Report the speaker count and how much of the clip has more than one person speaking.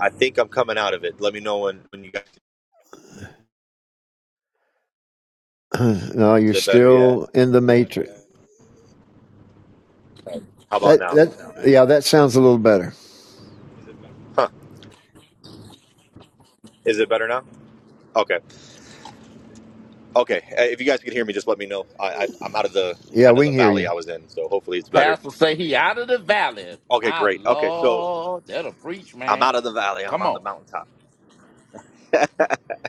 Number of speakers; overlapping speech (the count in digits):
3, about 11%